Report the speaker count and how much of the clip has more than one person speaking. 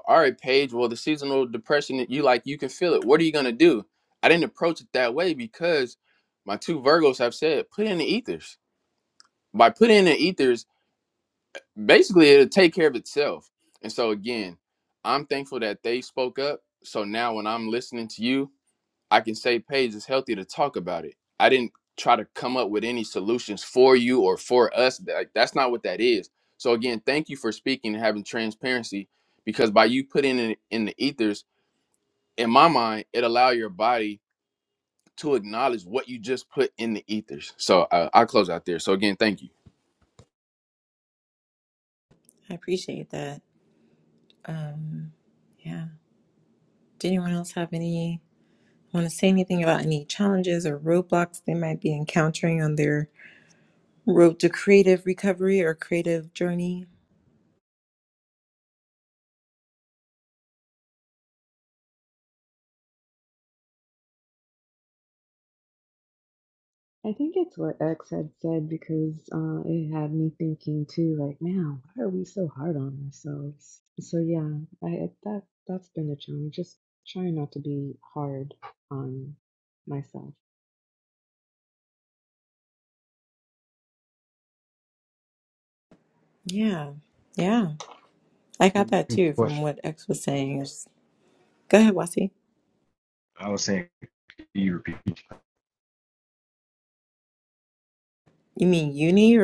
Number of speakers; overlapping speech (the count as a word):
four, about 1%